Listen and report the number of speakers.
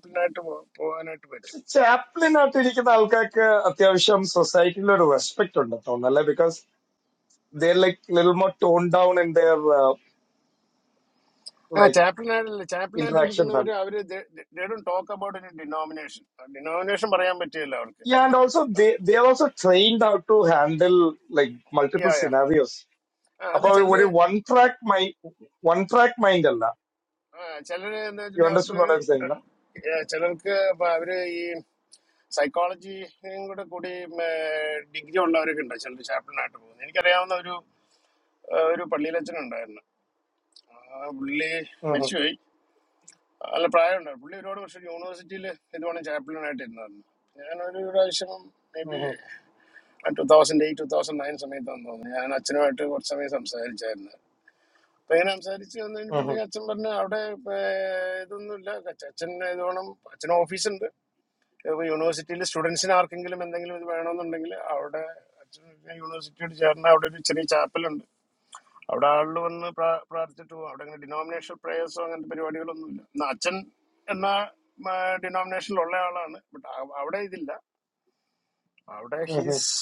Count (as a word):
two